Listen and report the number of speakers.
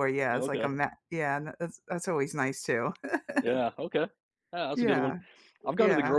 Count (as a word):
two